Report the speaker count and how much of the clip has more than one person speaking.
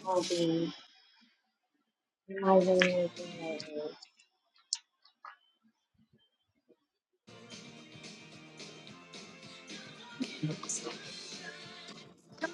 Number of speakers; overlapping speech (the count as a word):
one, no overlap